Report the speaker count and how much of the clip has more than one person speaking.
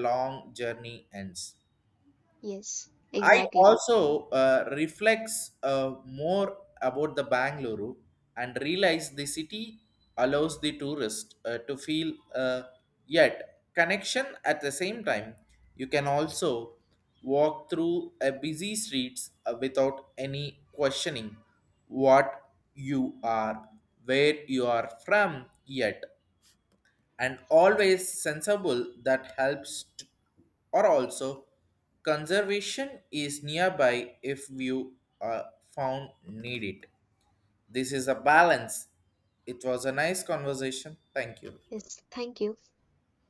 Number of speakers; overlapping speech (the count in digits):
2, about 1%